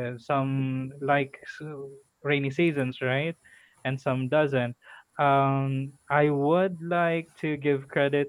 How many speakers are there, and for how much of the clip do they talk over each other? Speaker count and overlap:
1, no overlap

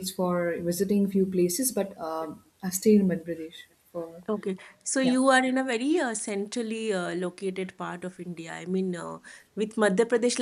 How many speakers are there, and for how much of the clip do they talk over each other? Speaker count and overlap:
2, about 1%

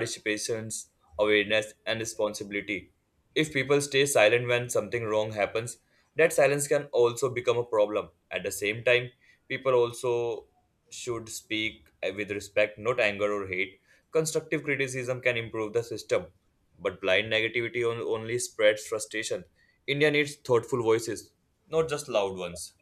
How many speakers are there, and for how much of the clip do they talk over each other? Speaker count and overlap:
1, no overlap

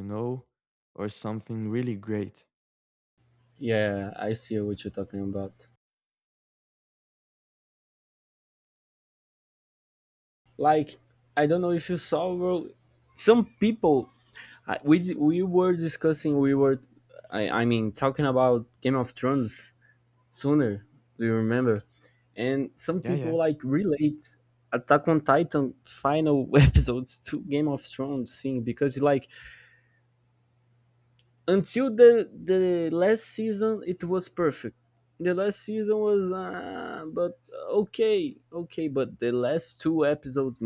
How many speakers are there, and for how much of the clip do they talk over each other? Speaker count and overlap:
2, about 1%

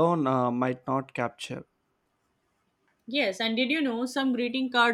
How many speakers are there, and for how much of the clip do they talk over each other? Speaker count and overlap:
2, no overlap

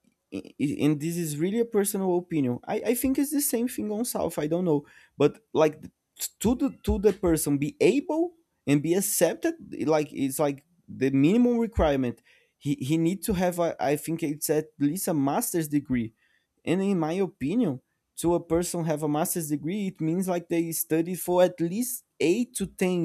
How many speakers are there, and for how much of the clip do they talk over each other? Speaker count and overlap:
1, no overlap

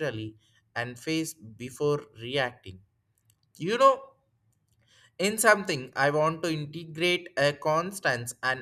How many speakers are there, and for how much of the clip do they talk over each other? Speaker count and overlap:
1, no overlap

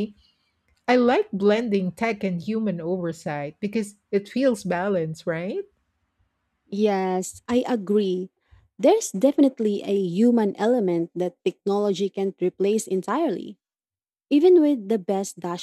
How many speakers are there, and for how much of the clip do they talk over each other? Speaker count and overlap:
2, no overlap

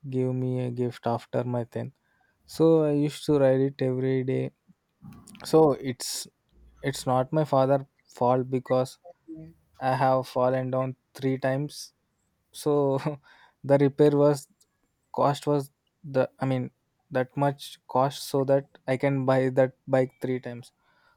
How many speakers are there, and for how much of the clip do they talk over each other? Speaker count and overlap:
1, no overlap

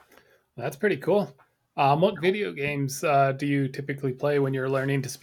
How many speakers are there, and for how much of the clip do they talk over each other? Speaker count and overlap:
1, no overlap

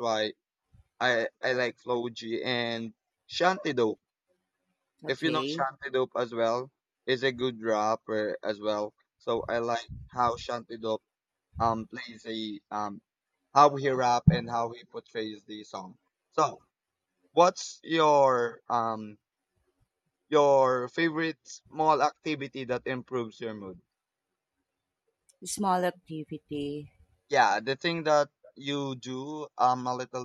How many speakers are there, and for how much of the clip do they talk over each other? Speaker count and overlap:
2, about 2%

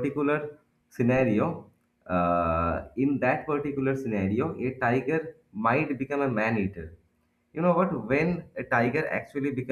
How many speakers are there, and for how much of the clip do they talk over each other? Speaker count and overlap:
1, no overlap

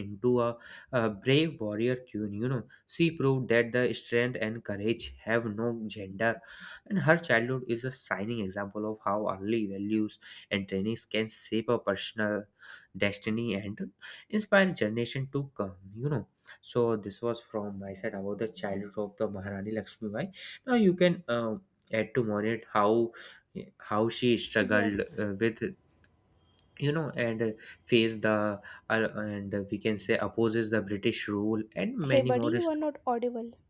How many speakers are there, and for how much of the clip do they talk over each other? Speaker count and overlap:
2, about 3%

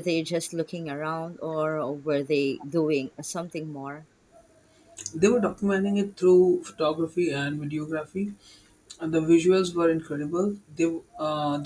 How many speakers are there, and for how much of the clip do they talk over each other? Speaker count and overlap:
2, no overlap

